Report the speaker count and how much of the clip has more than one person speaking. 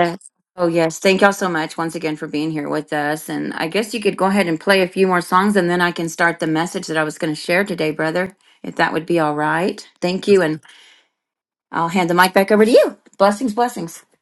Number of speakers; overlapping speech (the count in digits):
1, no overlap